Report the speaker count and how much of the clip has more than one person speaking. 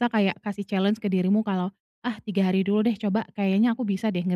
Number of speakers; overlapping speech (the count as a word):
one, no overlap